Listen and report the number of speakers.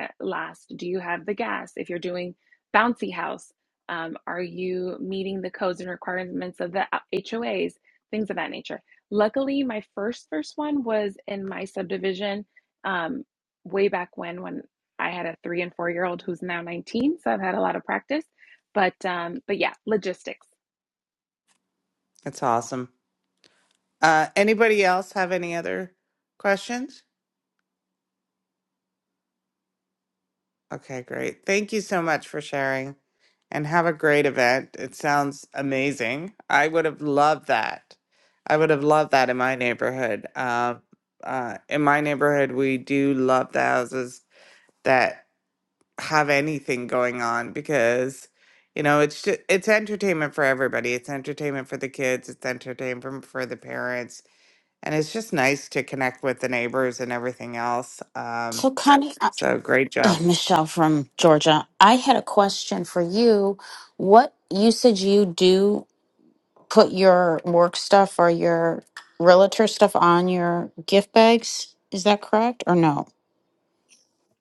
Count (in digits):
3